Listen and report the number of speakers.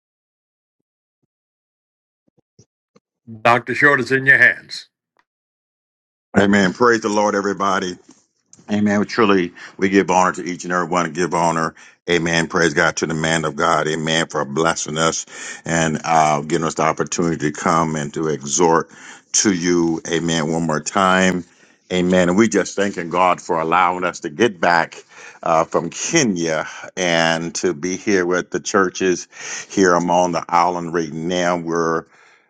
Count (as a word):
two